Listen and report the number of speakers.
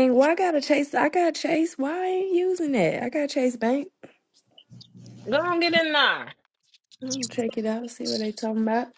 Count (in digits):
2